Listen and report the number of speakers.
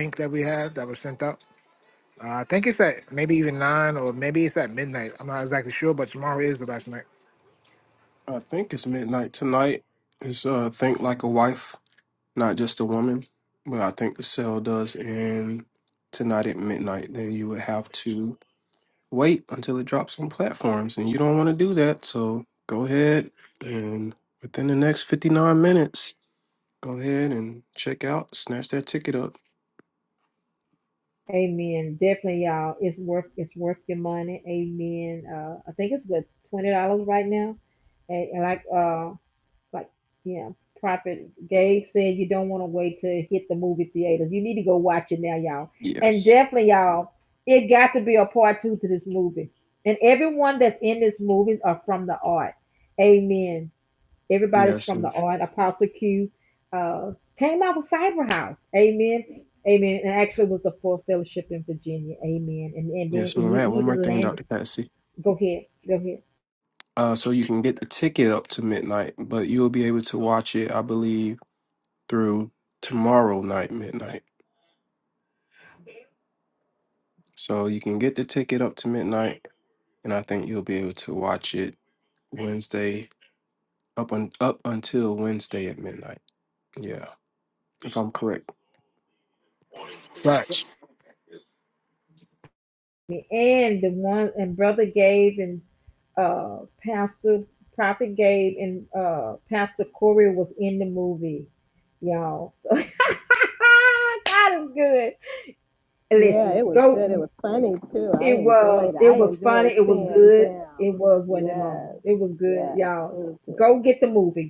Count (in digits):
4